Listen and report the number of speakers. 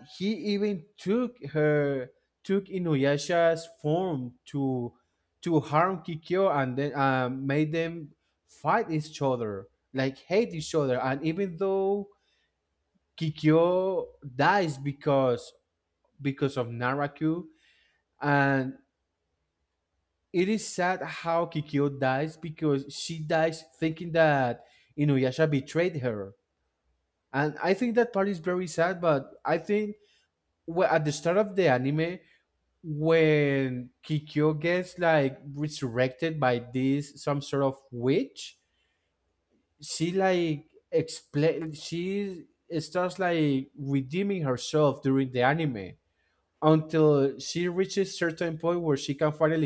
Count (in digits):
1